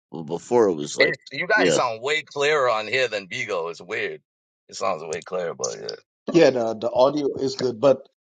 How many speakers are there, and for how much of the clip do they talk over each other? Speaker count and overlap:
3, about 4%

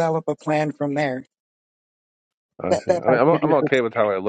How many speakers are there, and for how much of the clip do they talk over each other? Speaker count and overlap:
2, about 23%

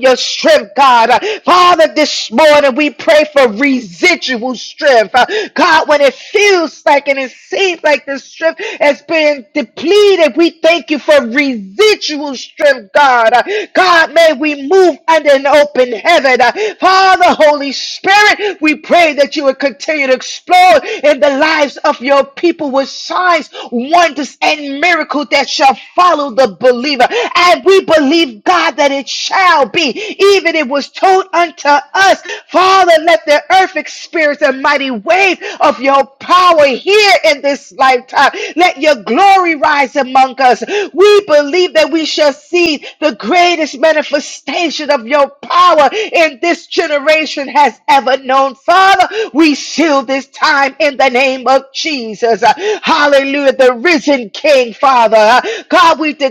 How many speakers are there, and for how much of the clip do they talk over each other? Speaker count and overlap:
1, no overlap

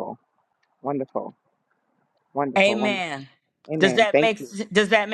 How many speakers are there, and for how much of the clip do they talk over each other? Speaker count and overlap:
2, about 20%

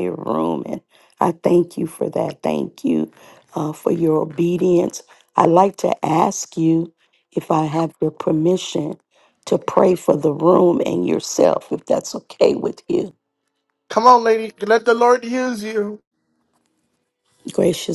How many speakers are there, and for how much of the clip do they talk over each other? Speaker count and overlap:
2, no overlap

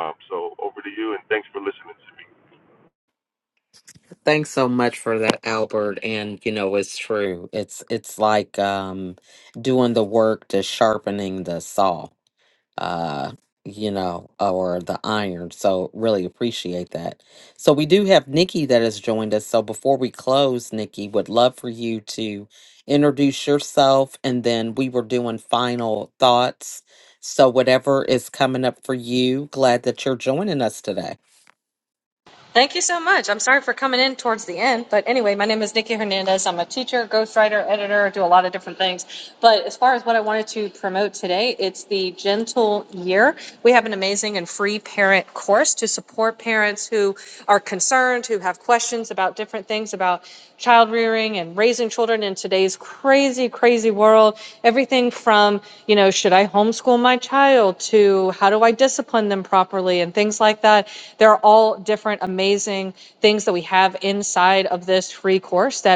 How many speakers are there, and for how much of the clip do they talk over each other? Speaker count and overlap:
3, no overlap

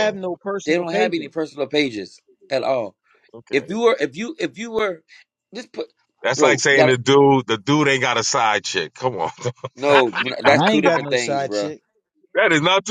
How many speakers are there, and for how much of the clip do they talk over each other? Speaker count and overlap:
3, about 22%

